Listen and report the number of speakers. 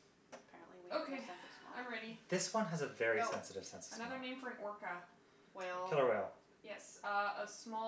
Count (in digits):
3